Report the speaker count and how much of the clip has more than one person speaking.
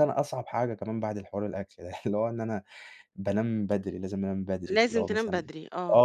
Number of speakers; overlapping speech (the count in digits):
2, about 15%